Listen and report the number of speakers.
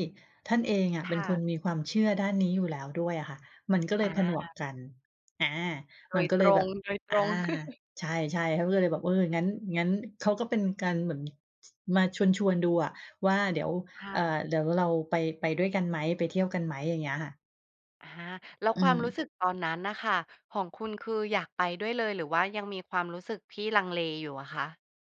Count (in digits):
2